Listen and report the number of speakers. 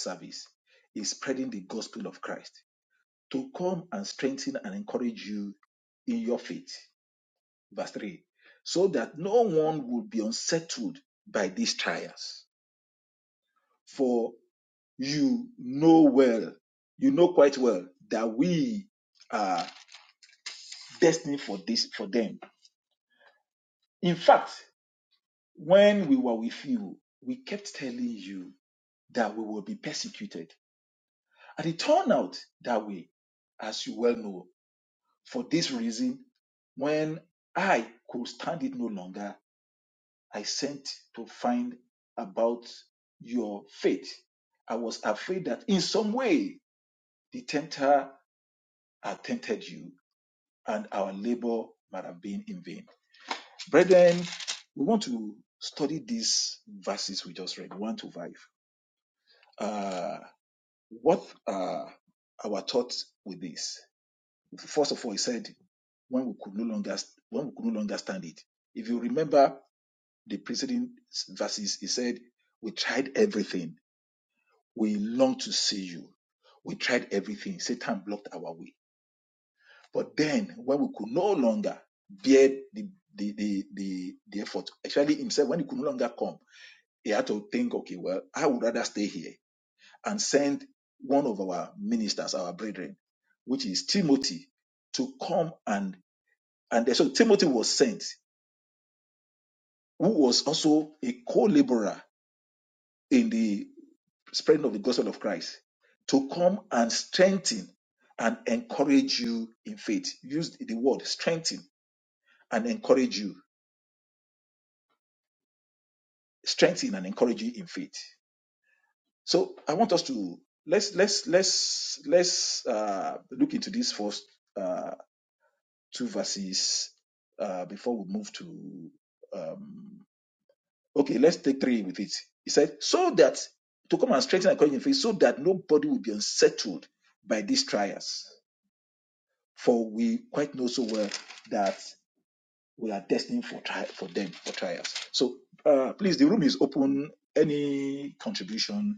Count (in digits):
1